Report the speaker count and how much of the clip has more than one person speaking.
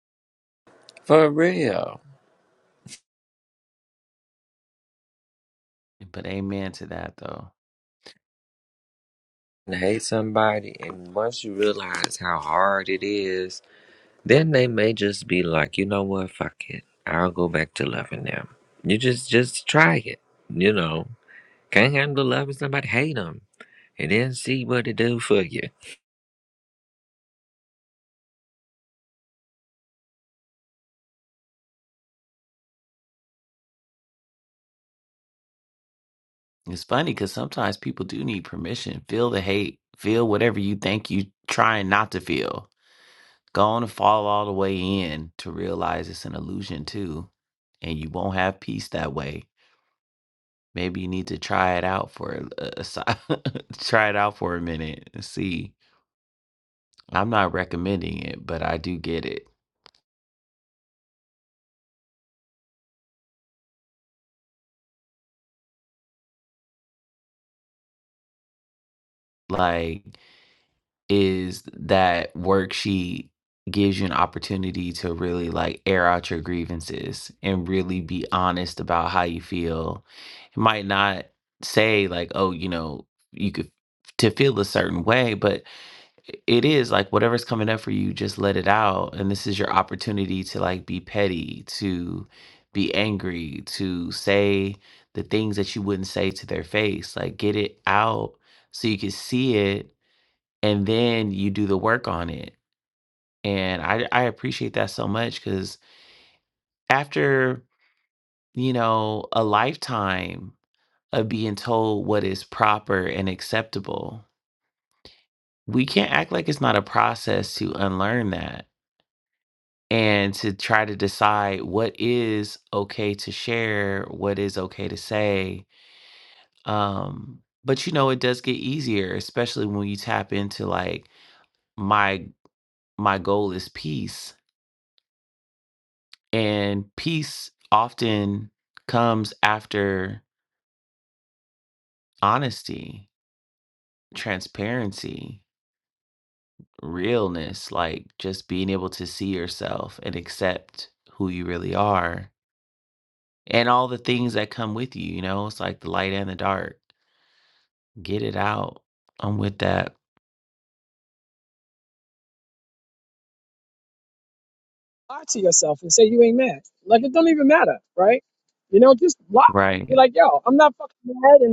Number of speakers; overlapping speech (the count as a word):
three, under 1%